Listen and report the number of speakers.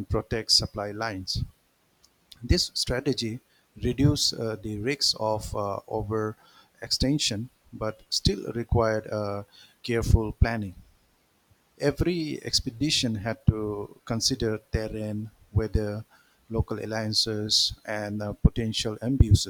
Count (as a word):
one